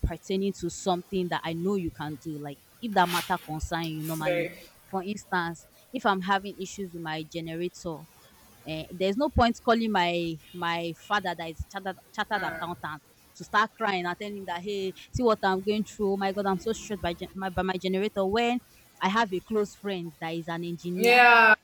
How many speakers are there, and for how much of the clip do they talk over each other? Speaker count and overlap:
2, about 3%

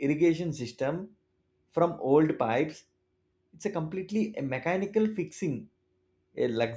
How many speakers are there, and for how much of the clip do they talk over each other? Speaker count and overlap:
1, no overlap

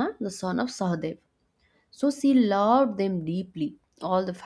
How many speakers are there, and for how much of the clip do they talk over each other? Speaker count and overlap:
1, no overlap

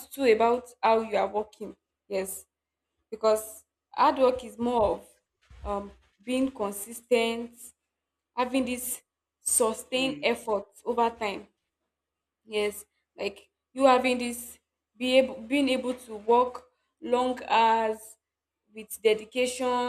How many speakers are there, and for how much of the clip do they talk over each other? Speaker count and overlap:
1, no overlap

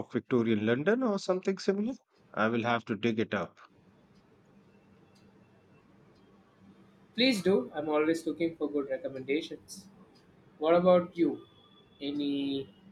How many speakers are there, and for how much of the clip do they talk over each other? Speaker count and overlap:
2, no overlap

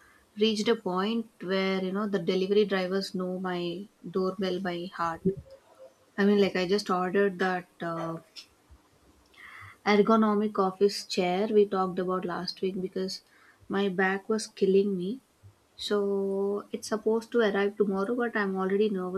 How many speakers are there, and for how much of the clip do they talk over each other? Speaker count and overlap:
1, no overlap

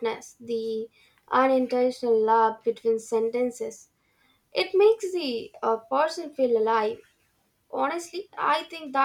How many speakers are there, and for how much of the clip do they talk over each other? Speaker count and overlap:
1, no overlap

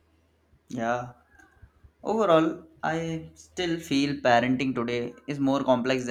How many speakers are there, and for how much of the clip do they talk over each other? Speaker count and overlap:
1, no overlap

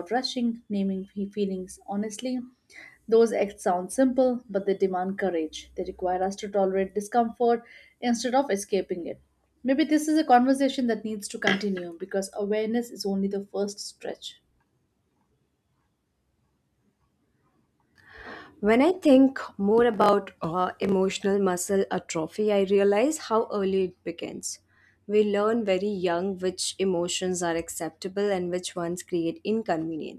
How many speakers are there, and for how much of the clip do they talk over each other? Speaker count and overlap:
2, no overlap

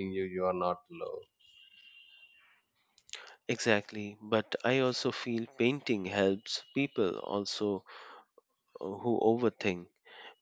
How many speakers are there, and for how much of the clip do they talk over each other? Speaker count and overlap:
2, no overlap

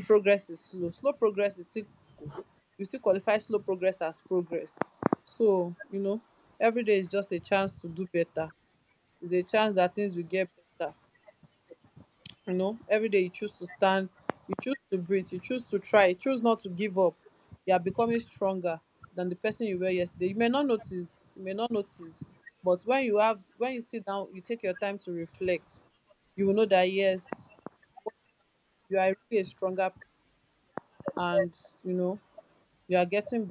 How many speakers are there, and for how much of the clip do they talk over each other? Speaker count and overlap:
1, no overlap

